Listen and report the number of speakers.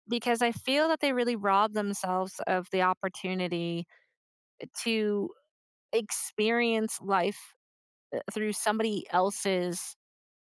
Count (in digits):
1